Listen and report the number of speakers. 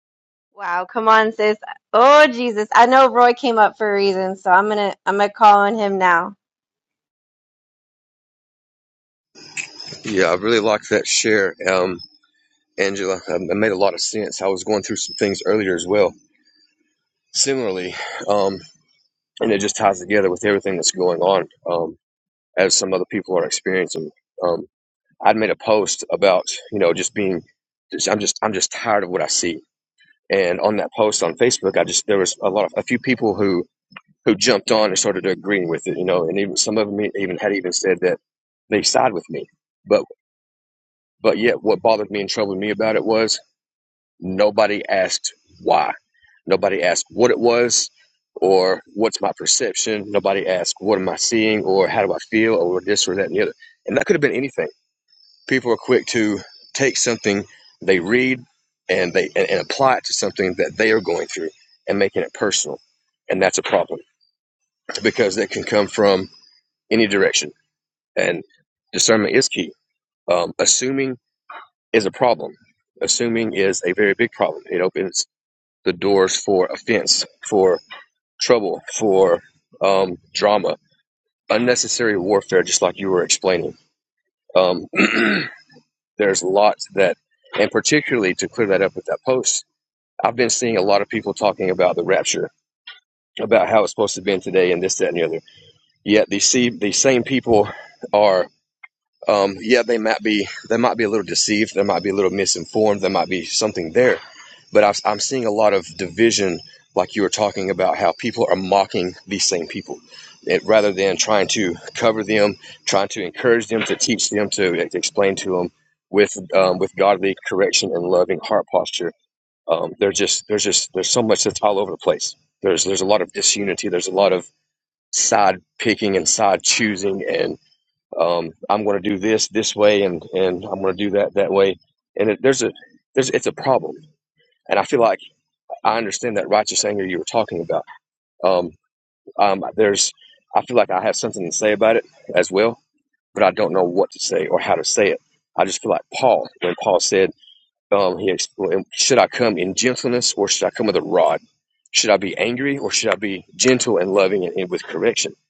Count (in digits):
2